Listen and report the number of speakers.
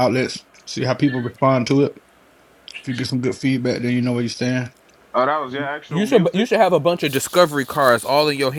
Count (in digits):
3